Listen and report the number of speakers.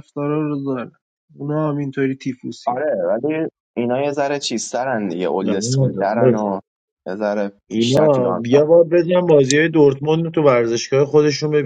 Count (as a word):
three